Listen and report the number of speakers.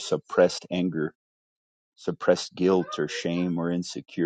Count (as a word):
one